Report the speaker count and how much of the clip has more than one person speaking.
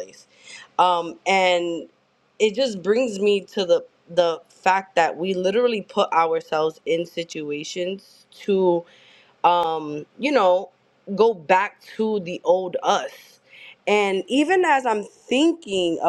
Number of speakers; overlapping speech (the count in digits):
1, no overlap